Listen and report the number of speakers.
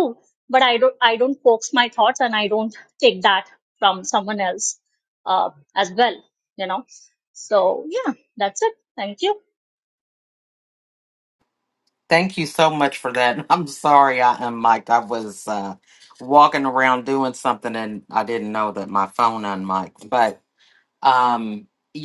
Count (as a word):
two